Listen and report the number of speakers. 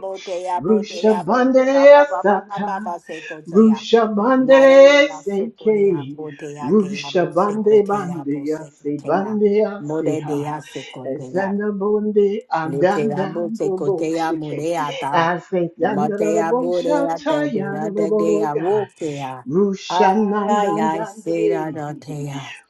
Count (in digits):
2